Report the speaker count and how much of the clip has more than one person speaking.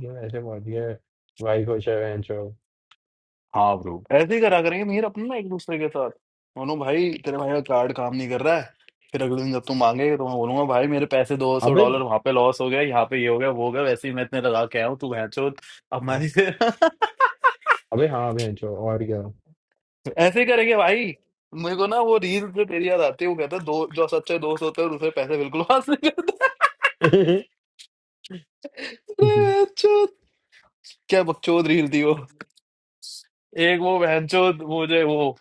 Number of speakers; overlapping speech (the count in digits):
2, about 1%